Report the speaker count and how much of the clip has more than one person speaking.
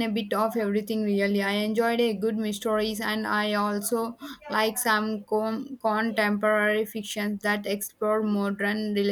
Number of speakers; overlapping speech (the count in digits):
1, no overlap